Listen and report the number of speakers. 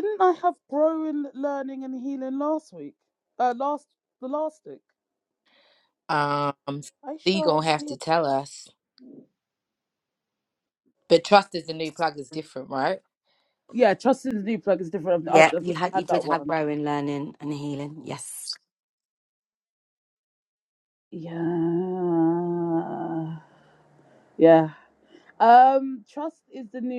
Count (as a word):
three